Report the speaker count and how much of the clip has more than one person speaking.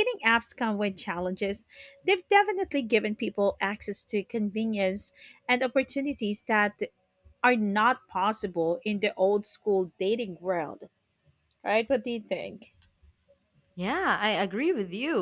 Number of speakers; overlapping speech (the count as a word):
two, no overlap